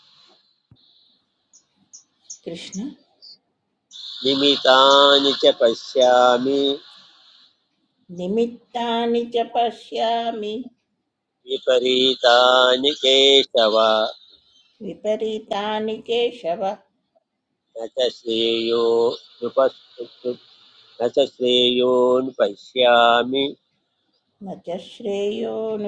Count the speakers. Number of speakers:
2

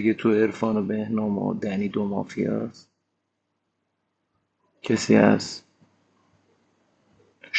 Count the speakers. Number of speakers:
1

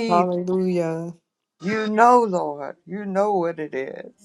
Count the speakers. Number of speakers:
2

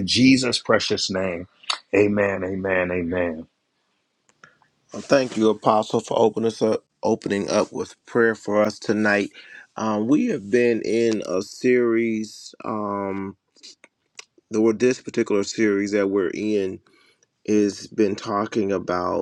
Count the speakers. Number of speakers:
2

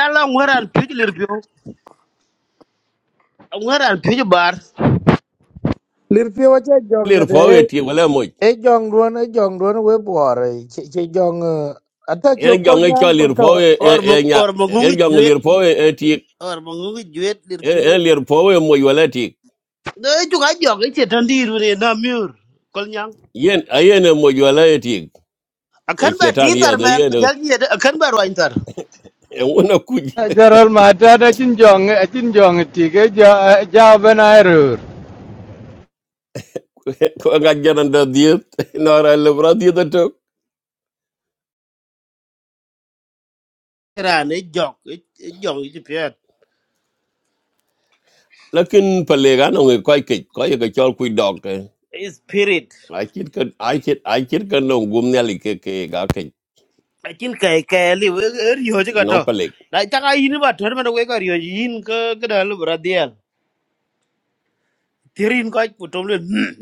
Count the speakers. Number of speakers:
4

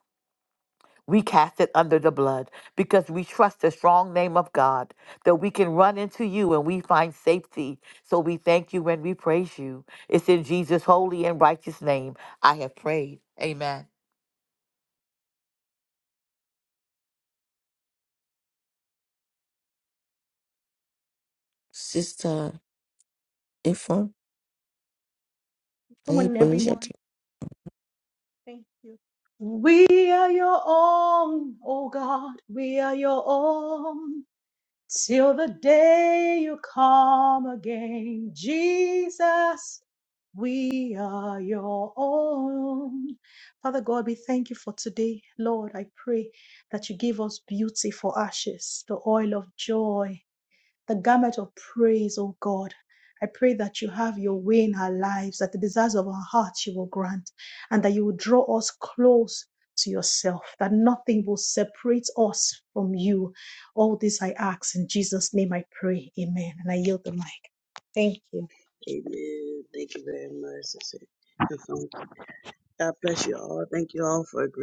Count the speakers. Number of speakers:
4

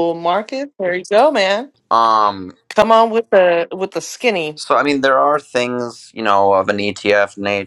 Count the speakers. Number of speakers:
2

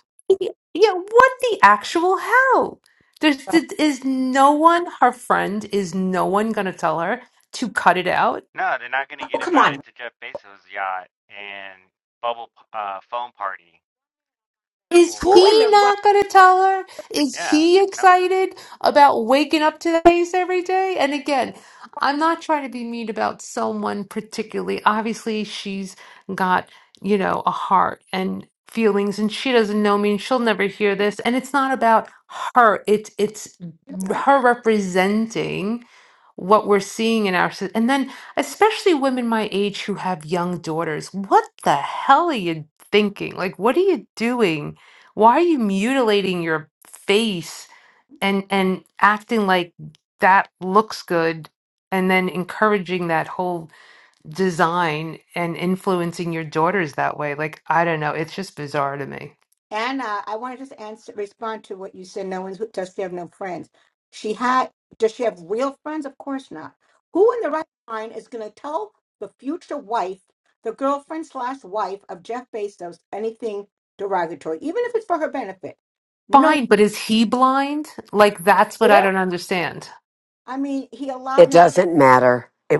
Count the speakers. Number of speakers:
4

